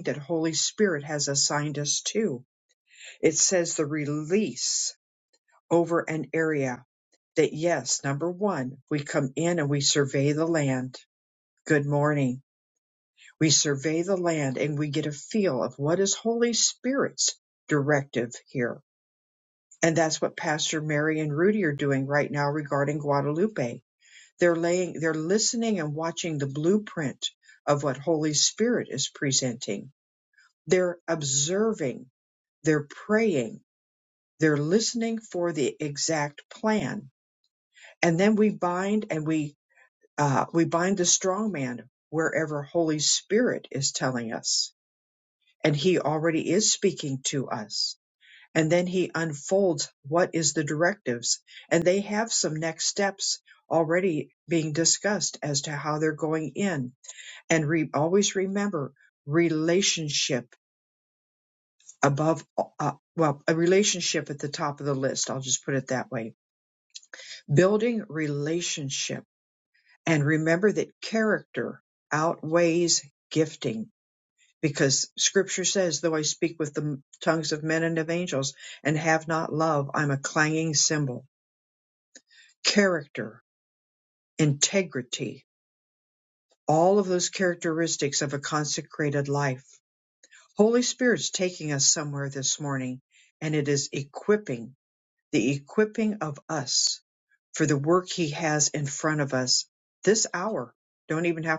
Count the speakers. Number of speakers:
1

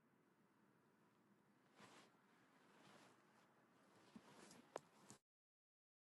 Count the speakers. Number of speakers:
0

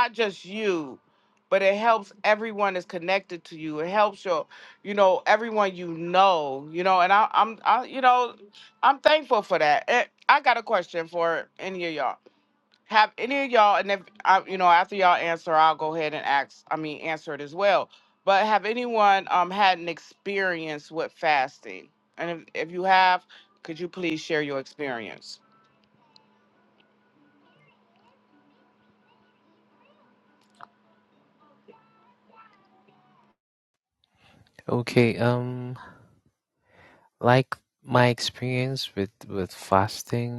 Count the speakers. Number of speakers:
2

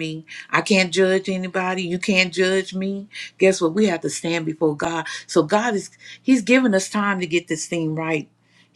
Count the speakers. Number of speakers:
1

